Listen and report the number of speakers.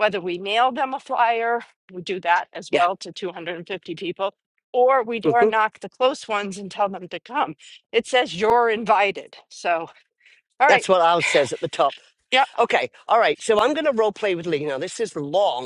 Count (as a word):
two